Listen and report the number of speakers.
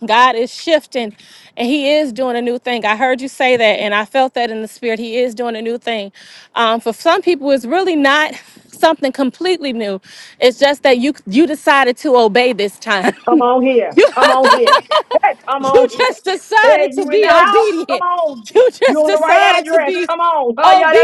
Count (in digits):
2